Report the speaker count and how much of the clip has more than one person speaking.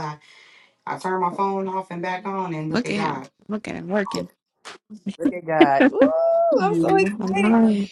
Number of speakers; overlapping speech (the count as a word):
three, about 20%